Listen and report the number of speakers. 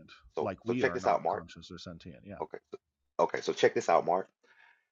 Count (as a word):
two